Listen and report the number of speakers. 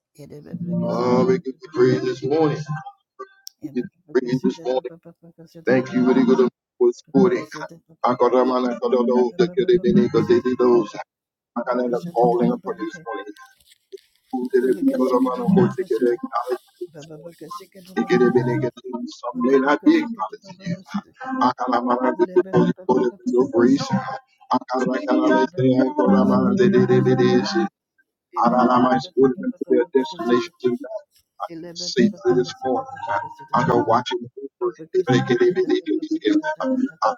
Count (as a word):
two